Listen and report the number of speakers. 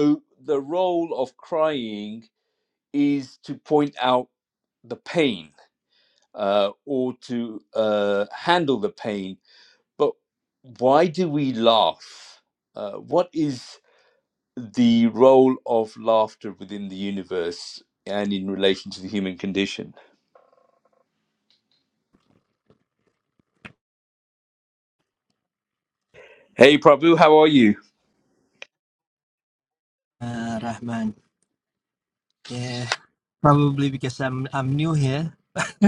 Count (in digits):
2